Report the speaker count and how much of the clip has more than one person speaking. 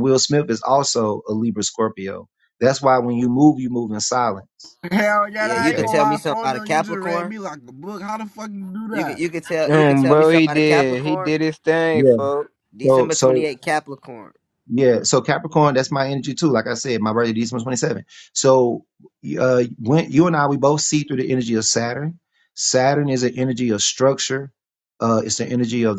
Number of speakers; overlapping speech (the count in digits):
4, about 18%